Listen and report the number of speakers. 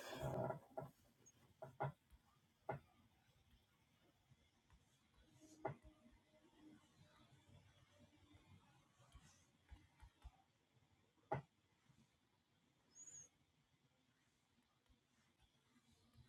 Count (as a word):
zero